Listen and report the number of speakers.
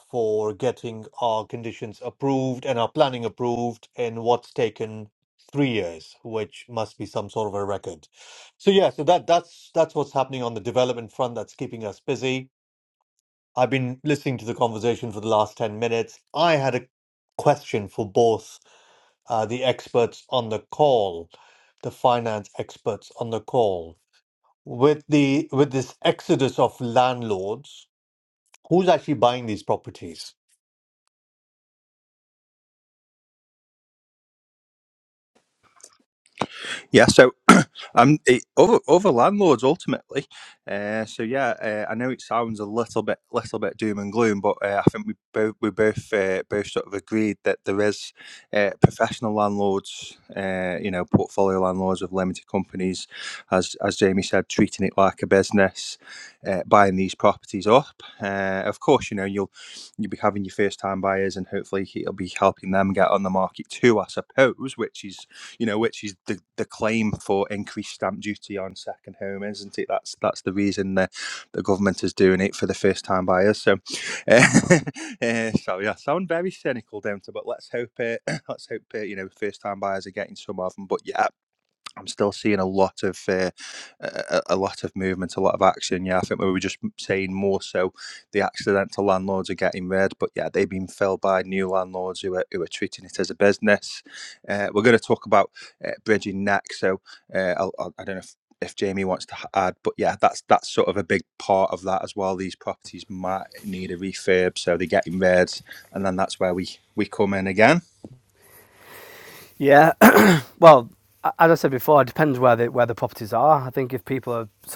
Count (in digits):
3